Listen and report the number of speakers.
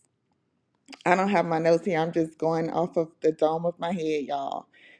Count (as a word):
one